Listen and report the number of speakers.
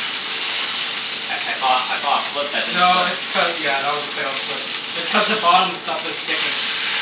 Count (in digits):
2